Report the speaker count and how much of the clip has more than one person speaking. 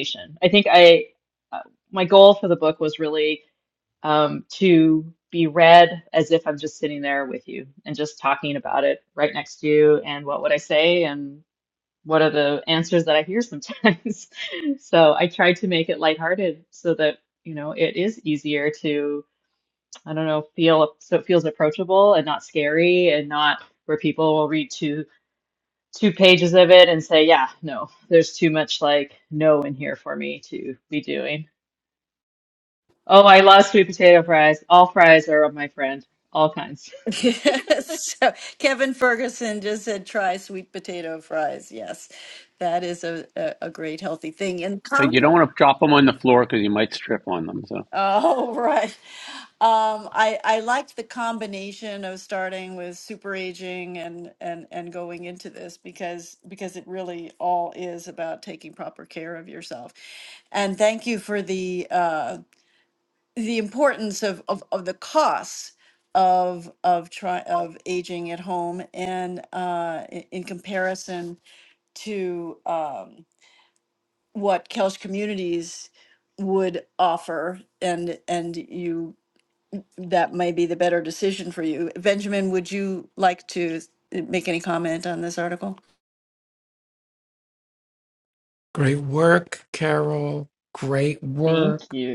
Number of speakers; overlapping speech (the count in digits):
4, about 1%